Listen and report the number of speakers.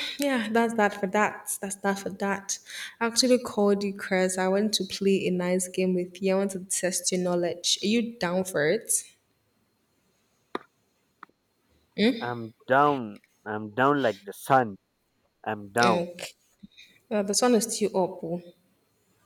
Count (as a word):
two